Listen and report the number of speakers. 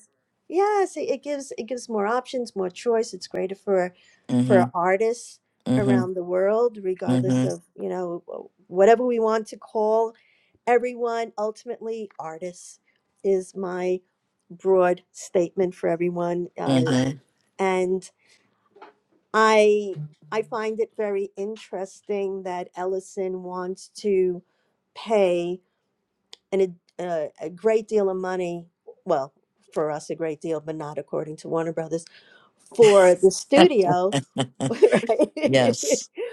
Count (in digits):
2